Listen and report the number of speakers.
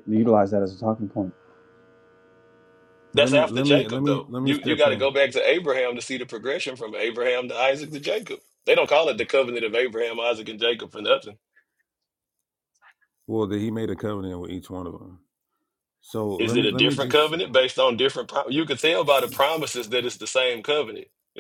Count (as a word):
three